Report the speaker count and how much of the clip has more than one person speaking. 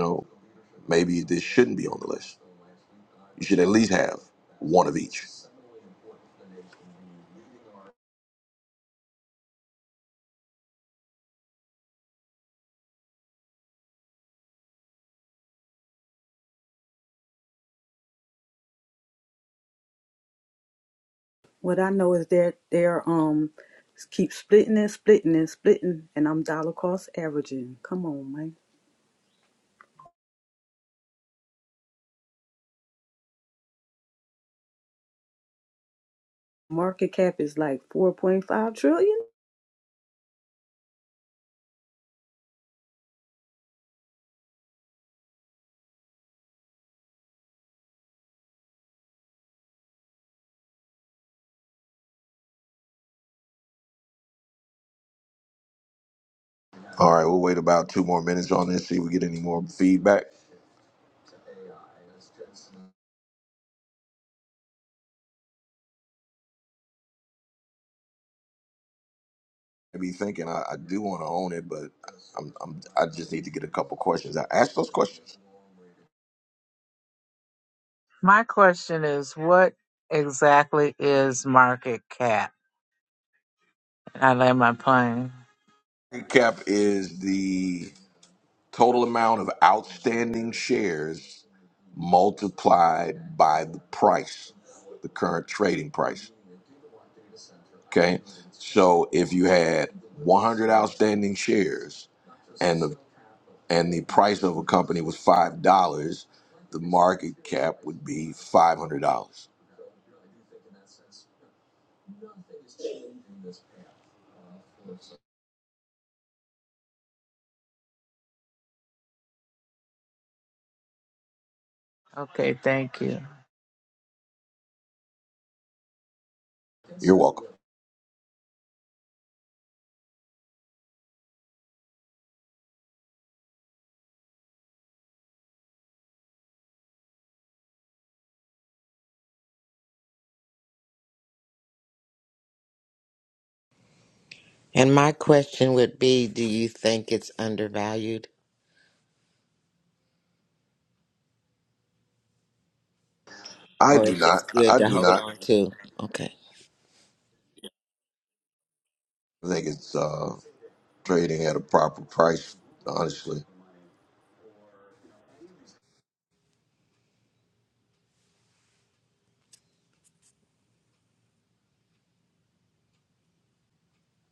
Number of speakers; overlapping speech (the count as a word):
four, about 1%